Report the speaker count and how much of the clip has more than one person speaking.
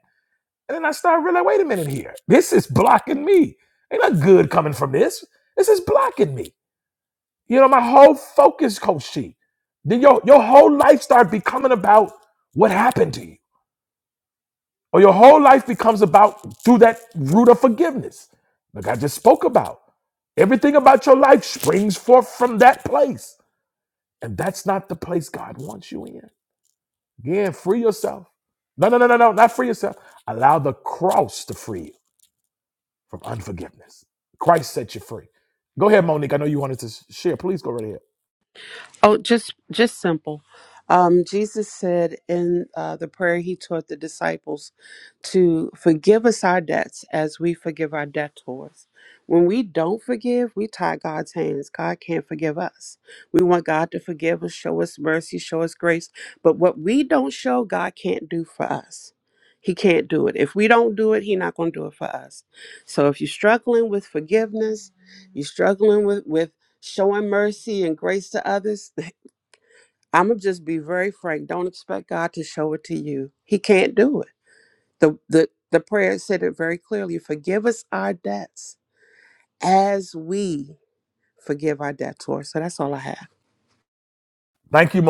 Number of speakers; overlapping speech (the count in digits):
2, no overlap